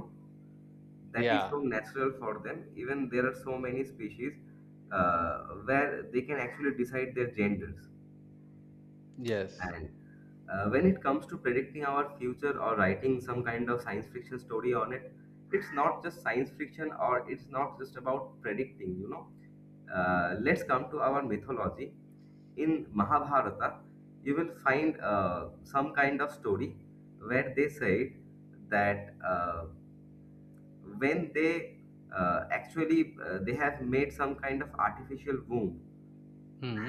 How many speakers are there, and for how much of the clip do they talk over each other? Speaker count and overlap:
two, about 1%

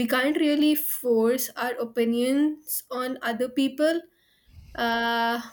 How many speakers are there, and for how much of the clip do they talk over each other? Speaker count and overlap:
one, no overlap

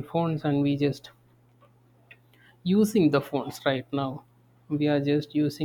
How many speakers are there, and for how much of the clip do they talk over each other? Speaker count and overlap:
one, no overlap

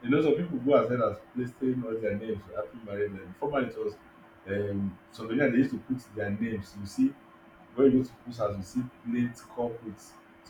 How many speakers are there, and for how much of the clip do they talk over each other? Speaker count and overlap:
one, no overlap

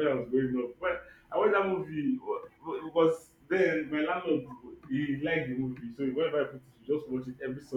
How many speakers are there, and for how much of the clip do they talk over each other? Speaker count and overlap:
one, no overlap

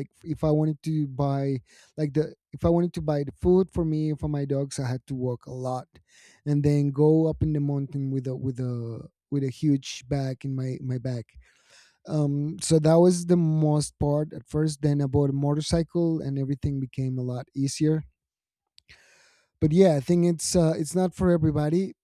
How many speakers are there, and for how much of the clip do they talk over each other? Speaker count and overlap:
one, no overlap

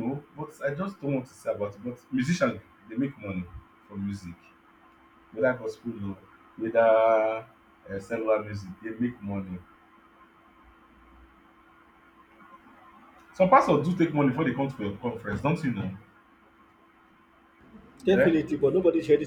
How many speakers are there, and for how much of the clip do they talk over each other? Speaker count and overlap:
two, about 2%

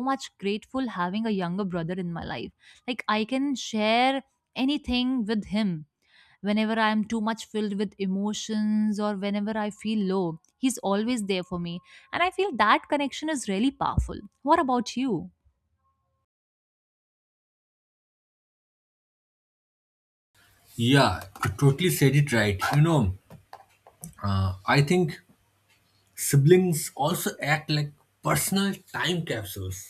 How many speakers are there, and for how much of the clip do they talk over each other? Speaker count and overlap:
two, no overlap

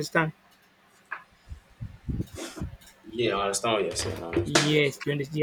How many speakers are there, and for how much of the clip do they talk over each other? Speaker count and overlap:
two, about 11%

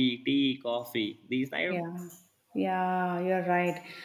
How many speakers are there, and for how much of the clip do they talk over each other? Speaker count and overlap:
two, about 3%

